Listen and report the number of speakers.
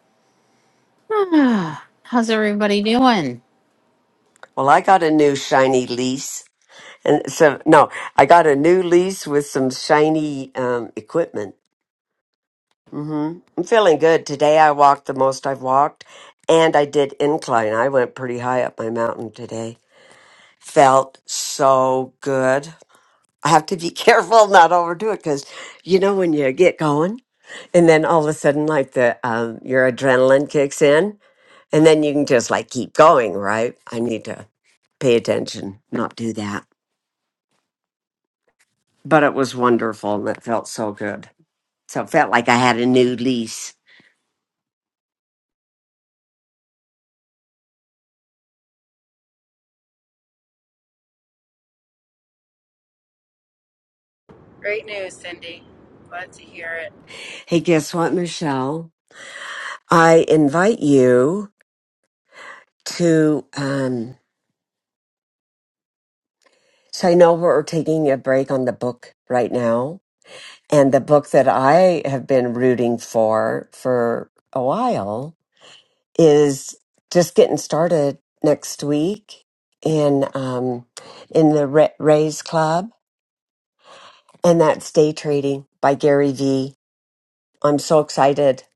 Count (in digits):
3